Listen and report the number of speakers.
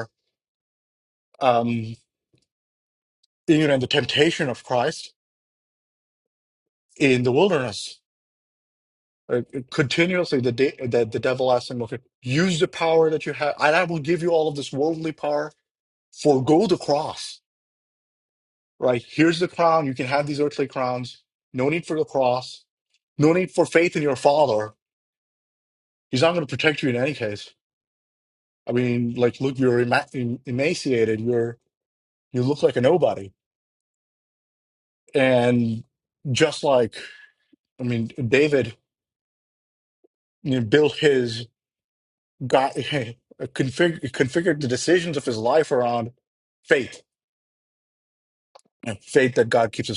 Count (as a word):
one